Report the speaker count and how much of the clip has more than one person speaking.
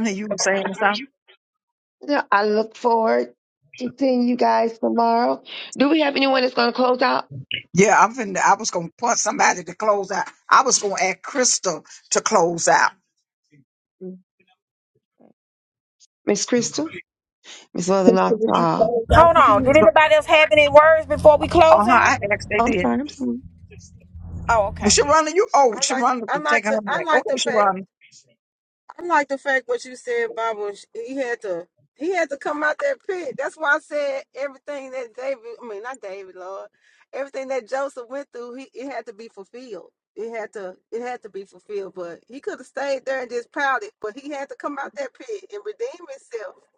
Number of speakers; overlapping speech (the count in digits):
4, about 8%